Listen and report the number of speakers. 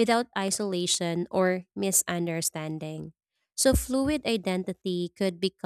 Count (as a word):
one